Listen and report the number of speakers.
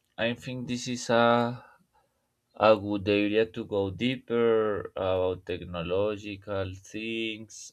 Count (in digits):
1